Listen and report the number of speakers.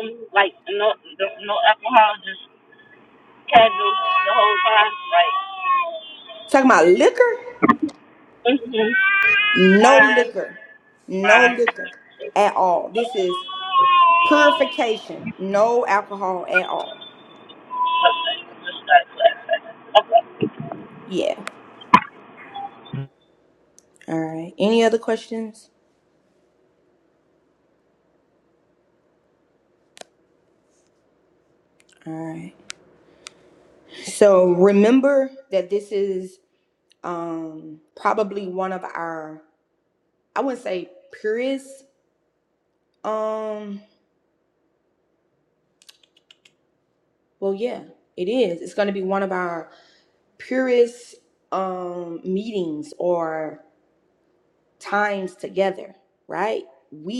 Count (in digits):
2